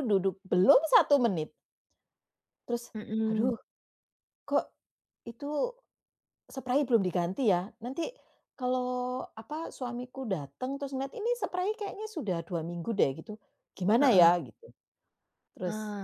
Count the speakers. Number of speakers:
2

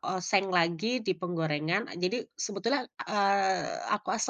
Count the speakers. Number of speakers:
1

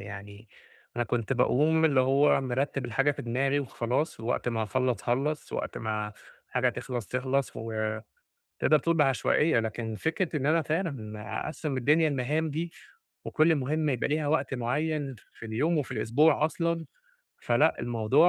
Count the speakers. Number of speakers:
1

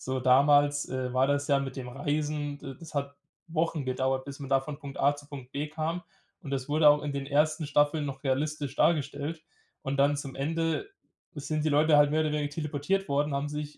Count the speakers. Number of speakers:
1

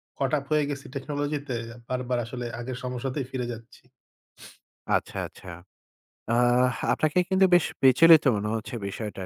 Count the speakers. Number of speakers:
2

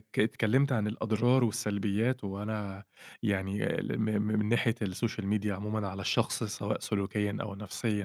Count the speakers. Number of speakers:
1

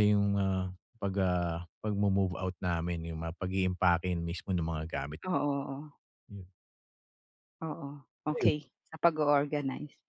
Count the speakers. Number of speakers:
2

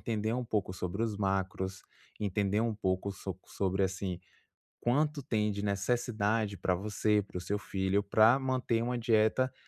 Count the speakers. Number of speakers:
1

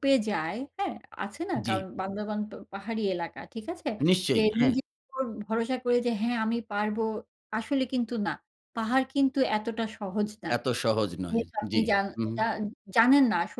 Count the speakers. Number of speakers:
2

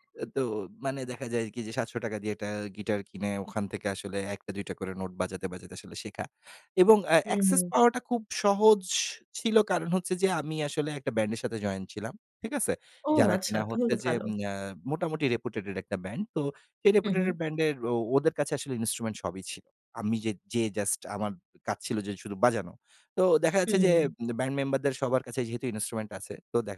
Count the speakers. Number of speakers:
2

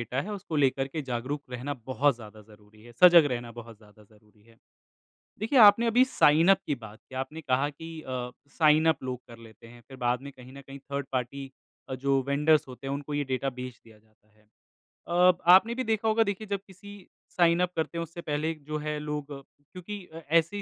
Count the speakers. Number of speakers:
1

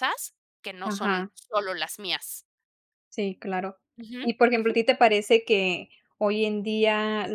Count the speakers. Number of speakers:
2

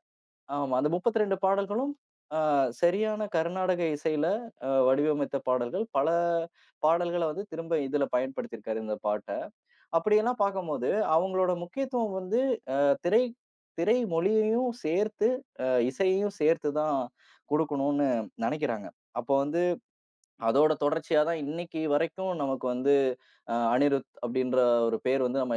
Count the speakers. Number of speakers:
1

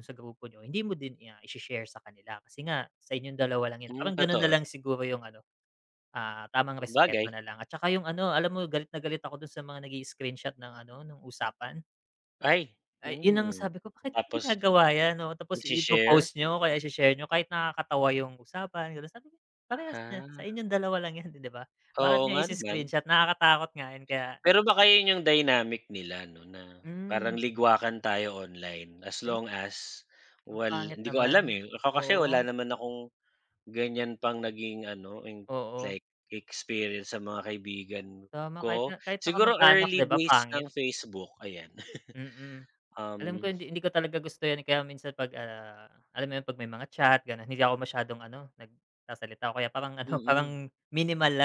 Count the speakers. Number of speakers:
2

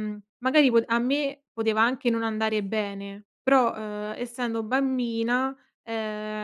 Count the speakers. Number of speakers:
1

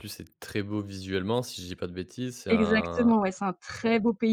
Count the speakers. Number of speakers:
2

